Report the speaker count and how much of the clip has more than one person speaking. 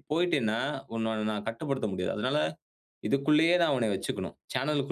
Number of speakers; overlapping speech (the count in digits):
1, no overlap